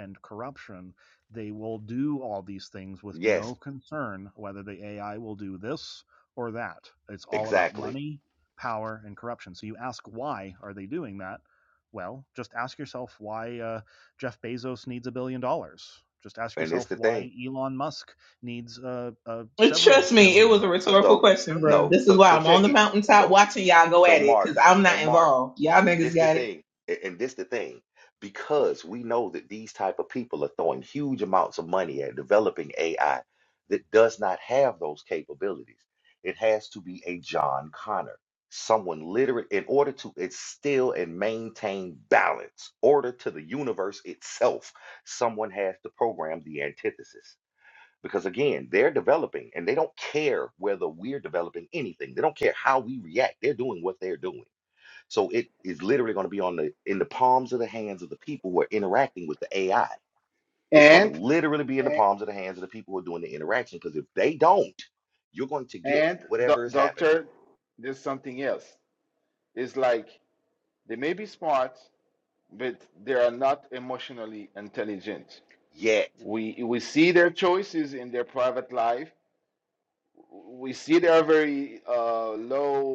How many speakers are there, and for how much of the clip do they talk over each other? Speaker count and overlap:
four, about 9%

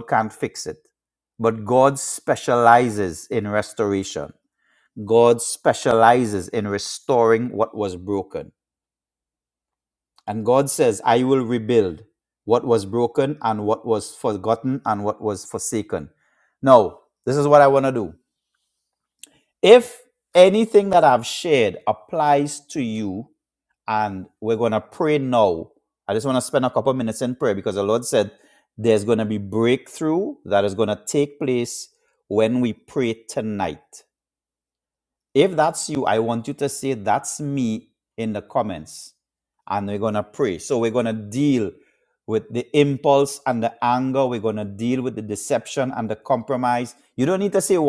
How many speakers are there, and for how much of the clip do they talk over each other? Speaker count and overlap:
one, no overlap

